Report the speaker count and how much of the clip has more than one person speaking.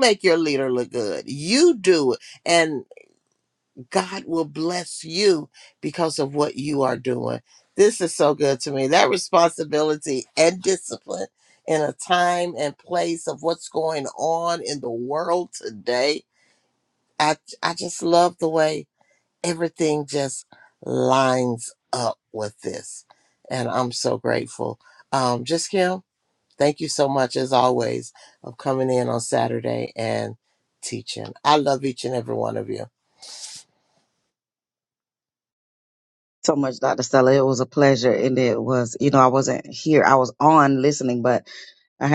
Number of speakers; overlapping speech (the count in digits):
2, no overlap